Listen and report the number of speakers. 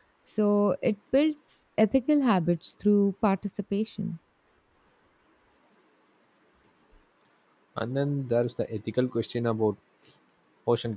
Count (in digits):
2